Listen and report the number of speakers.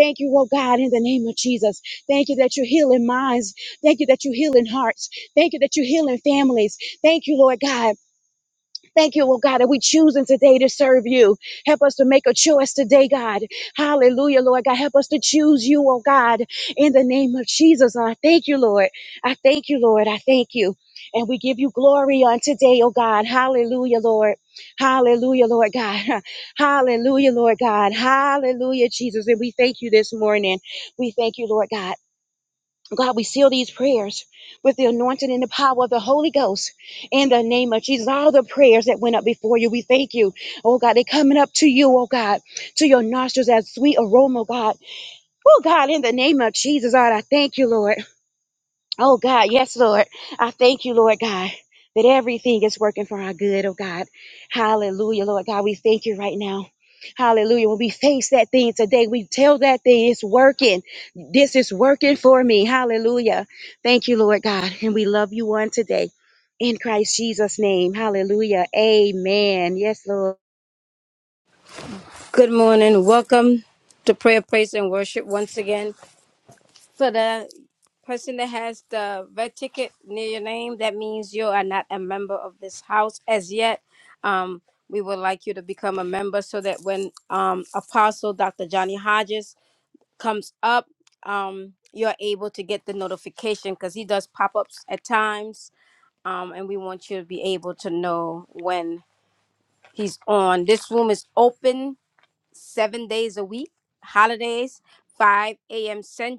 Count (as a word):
two